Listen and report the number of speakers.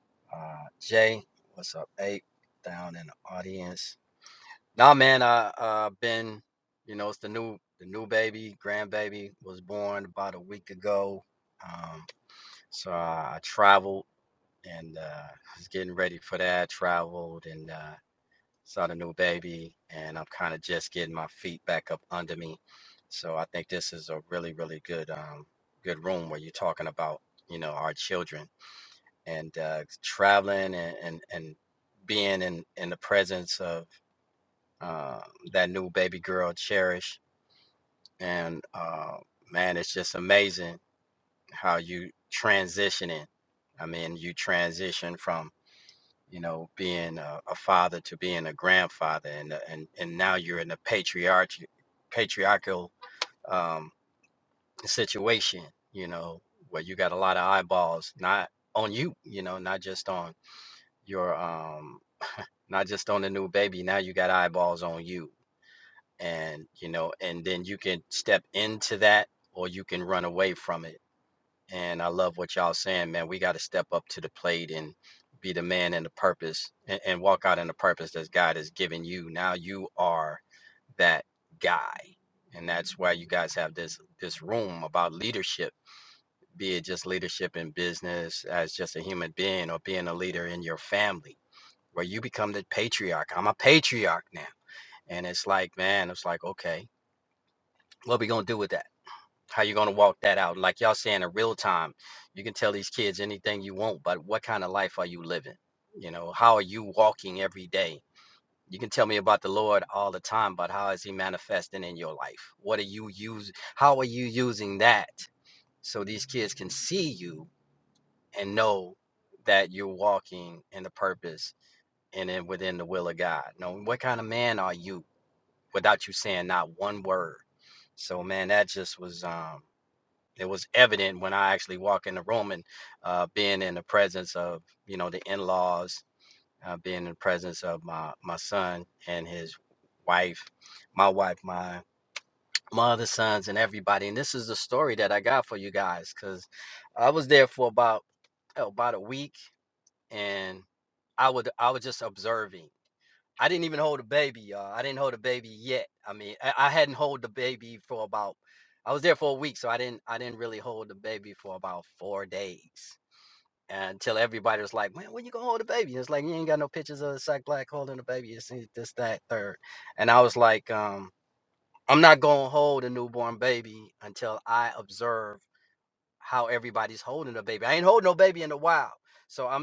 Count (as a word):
one